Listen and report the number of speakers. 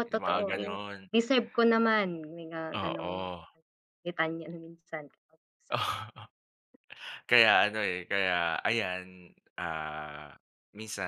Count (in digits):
2